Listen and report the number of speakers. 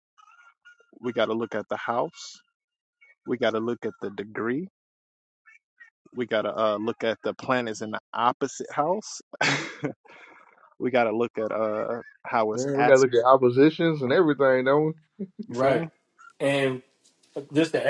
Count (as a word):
three